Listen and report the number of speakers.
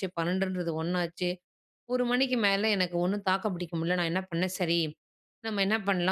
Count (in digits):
1